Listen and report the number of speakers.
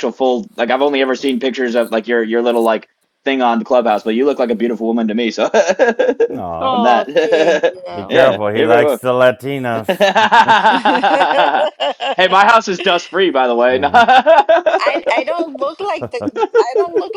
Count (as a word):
three